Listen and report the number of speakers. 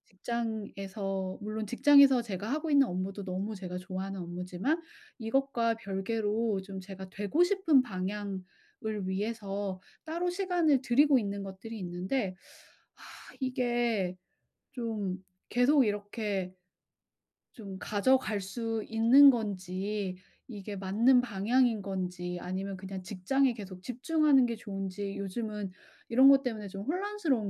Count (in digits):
1